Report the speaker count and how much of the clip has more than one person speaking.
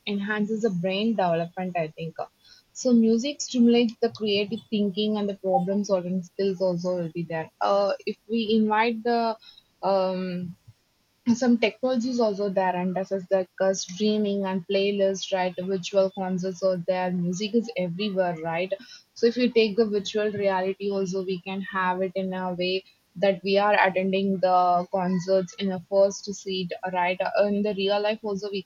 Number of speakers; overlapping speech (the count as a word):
one, no overlap